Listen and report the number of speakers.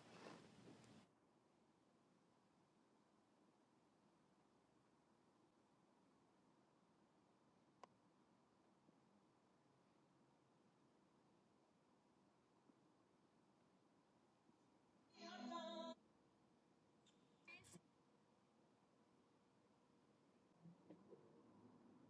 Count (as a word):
zero